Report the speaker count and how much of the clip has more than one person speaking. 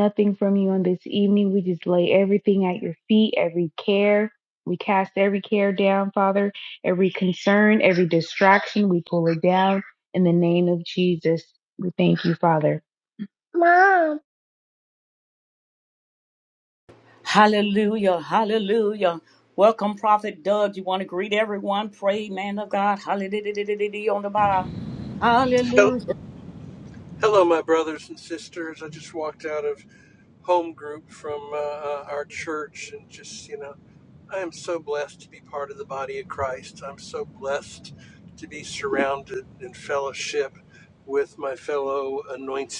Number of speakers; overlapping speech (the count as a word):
three, about 1%